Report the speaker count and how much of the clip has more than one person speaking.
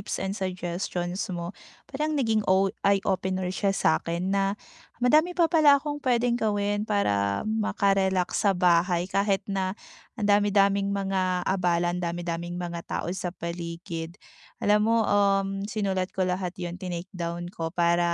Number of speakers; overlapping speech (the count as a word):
one, no overlap